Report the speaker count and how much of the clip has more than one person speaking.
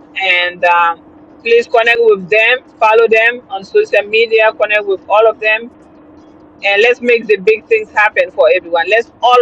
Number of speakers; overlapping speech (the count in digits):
1, no overlap